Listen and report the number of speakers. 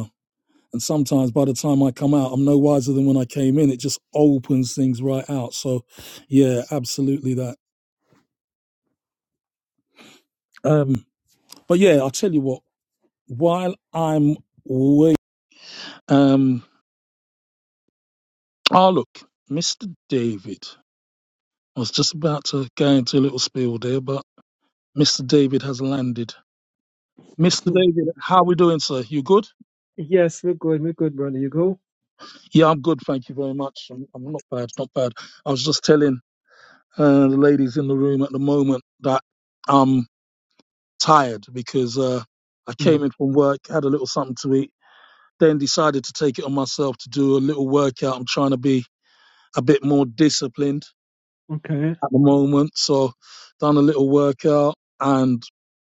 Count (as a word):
two